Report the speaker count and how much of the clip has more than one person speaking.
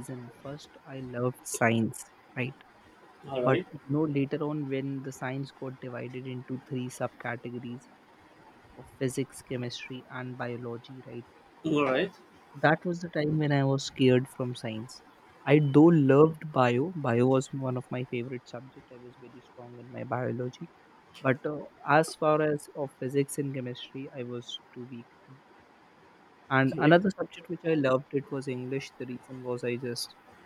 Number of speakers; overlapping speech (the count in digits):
2, about 2%